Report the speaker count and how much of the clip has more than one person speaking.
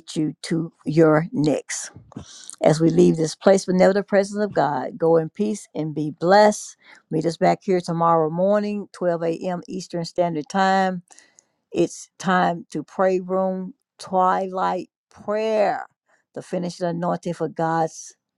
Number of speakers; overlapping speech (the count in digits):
1, no overlap